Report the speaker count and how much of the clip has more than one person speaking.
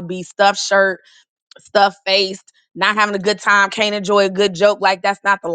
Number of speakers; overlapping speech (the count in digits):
1, no overlap